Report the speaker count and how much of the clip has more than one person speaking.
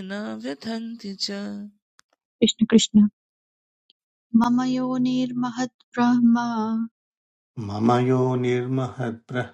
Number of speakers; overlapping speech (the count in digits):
3, no overlap